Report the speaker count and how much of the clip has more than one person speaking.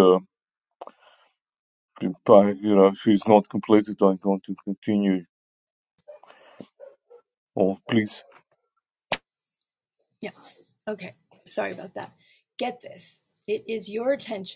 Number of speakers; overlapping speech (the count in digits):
2, no overlap